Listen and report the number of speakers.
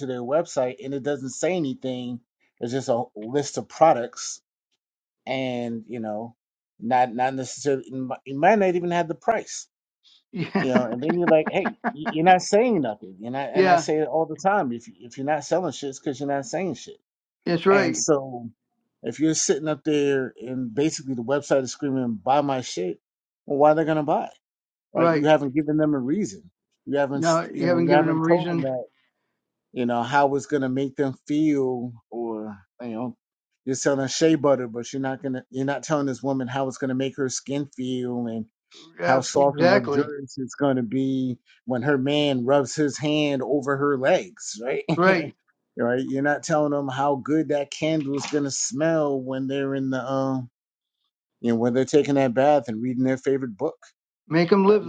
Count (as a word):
two